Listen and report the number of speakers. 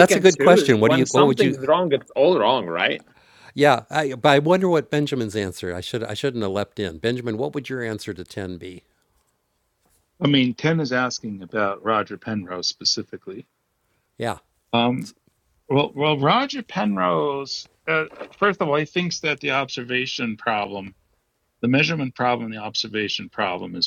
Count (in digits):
3